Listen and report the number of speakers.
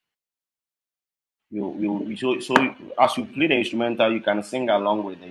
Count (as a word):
one